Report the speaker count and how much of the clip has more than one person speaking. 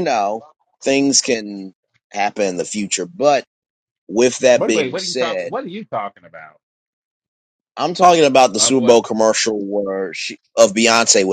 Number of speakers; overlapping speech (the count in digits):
2, about 12%